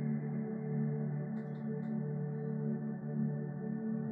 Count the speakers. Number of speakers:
zero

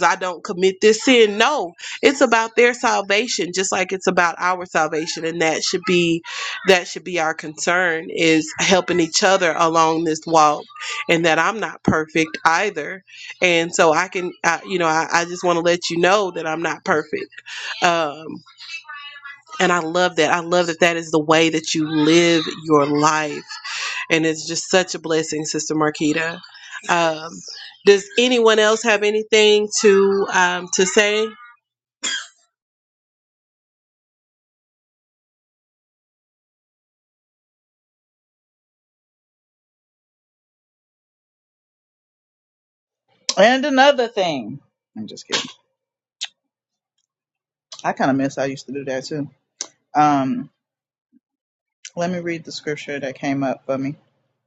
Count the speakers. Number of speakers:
two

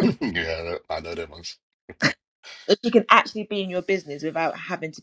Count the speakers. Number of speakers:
two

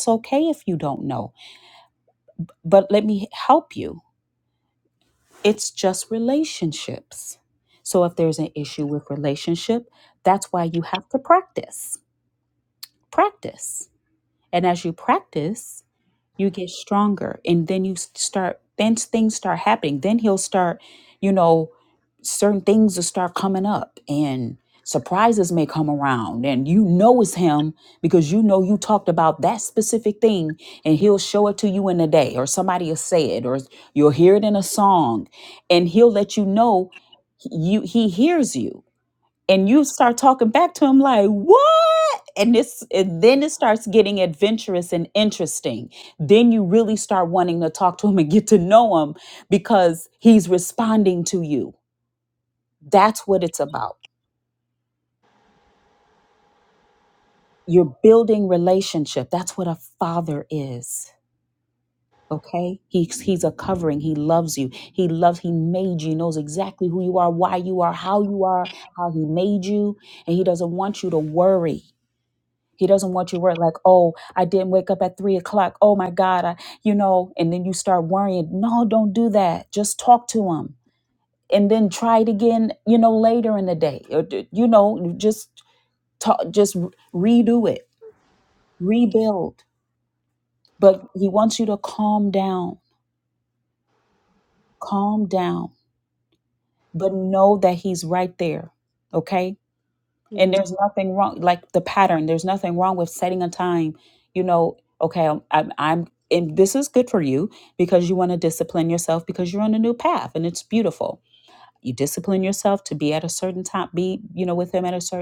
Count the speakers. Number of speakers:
one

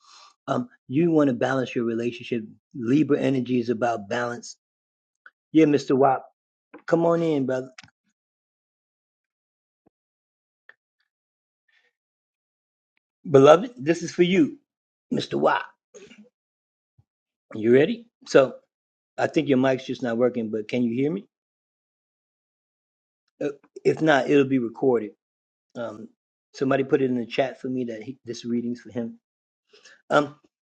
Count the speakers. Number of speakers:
one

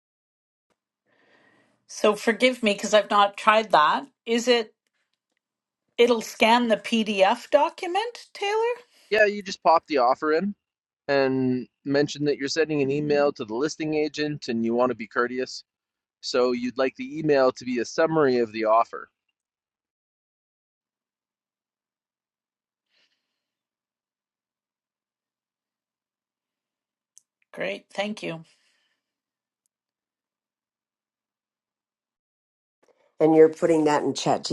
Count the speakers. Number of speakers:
three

